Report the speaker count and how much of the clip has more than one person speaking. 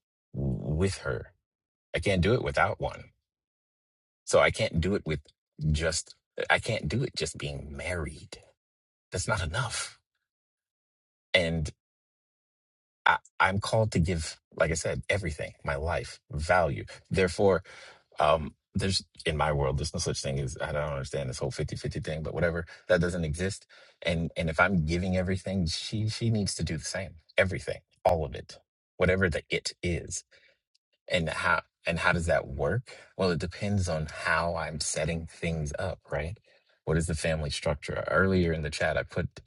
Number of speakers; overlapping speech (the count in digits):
1, no overlap